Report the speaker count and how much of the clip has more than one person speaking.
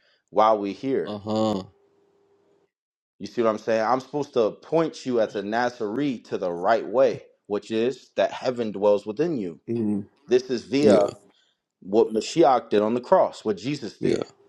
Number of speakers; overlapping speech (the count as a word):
two, about 3%